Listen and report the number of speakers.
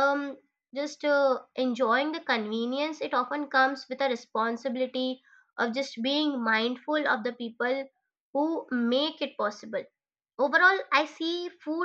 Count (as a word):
one